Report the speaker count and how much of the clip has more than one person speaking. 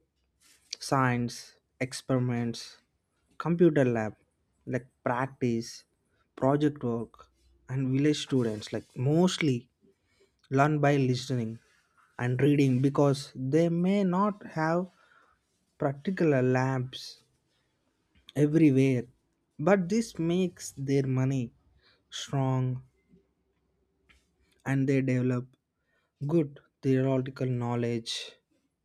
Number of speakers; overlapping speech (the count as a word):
one, no overlap